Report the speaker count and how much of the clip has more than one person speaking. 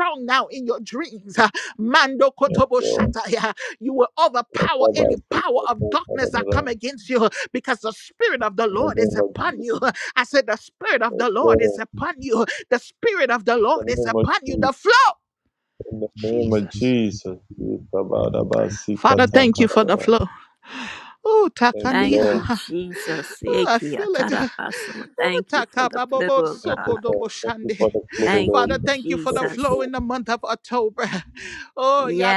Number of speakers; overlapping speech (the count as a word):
three, about 40%